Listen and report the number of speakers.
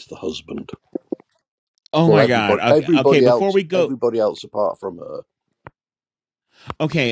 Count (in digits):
2